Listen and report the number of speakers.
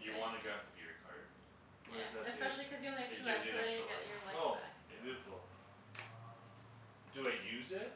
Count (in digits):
3